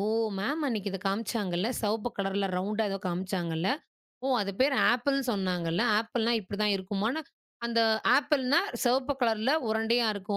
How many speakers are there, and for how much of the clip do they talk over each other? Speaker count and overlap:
1, no overlap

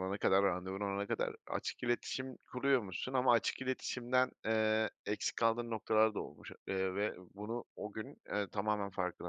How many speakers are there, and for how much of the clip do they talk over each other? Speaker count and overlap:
1, no overlap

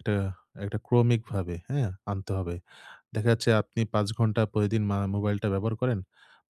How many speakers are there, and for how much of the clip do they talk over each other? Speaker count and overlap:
1, no overlap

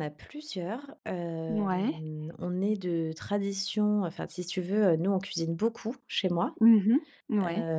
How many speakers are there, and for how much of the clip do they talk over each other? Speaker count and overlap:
2, about 10%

